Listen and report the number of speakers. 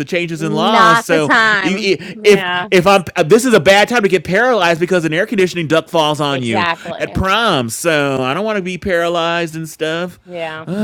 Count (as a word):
two